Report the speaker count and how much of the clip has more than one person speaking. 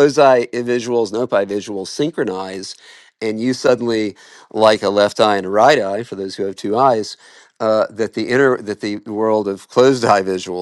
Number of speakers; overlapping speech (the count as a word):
one, no overlap